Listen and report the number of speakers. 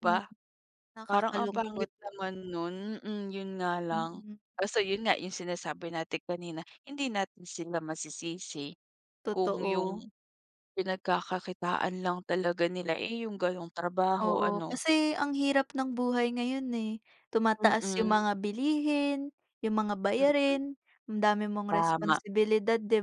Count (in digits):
2